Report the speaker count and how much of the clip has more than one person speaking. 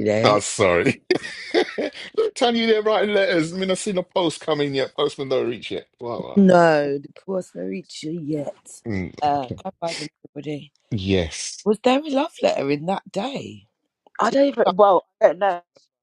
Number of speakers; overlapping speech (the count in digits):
3, about 4%